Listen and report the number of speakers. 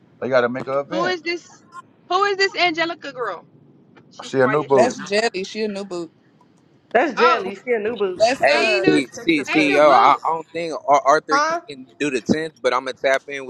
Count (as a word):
five